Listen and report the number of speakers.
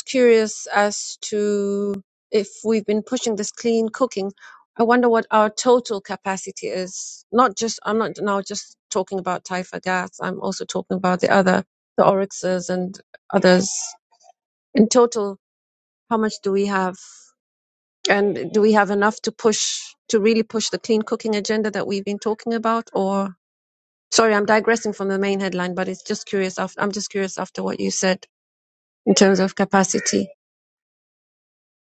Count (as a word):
one